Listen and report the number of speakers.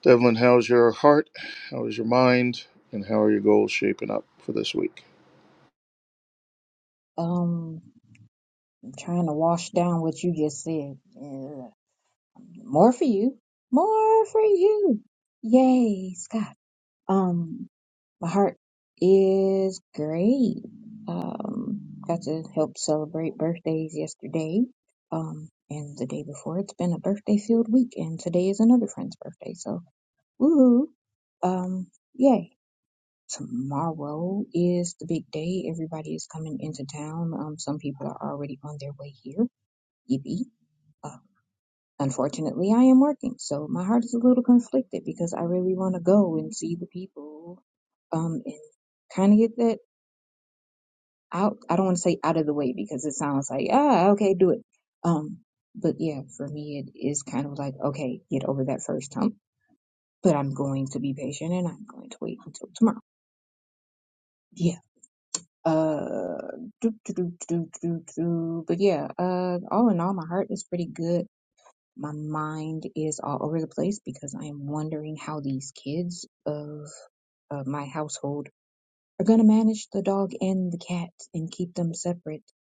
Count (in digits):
2